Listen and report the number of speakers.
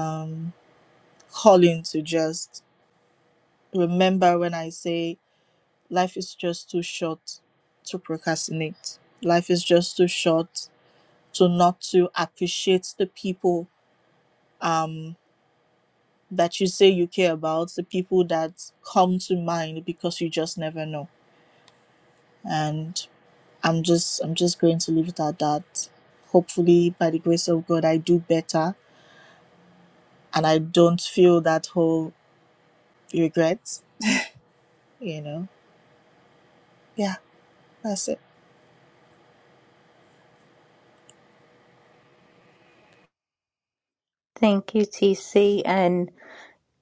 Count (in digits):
2